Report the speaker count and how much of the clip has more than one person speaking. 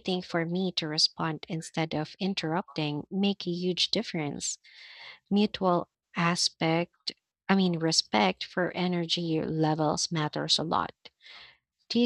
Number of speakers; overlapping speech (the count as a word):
one, no overlap